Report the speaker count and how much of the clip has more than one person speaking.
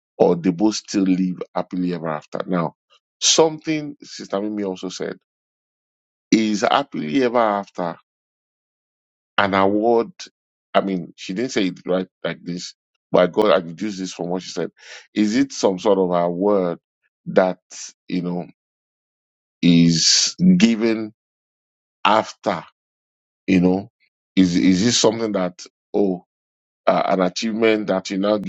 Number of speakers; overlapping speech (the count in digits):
1, no overlap